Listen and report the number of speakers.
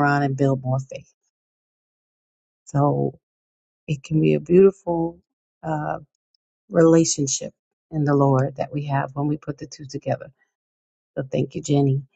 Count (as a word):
one